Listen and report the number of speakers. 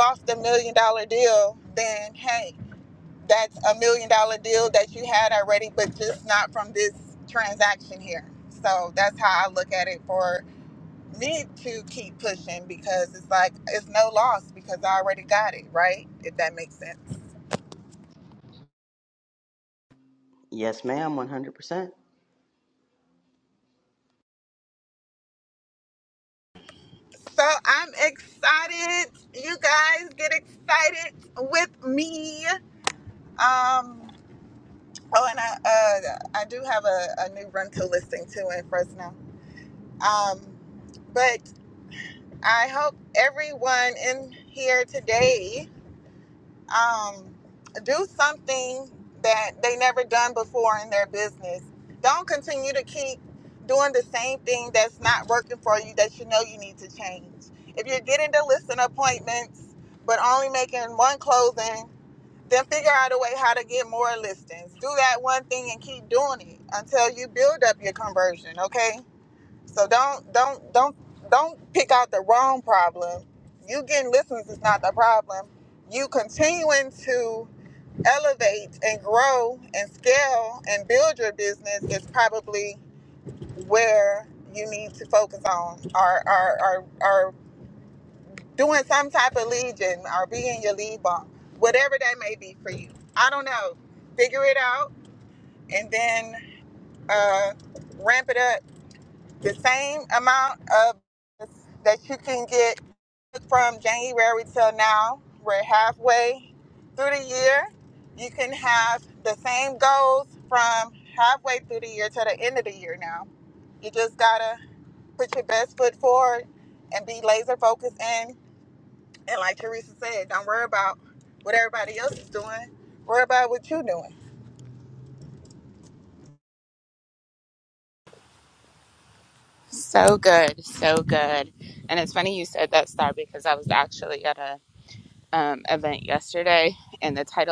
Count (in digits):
3